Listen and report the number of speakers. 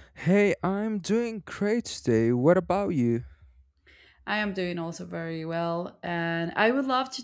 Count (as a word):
two